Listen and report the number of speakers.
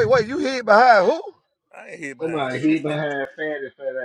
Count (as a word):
three